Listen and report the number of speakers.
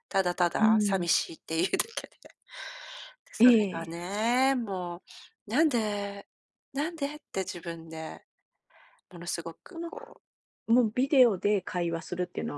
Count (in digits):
2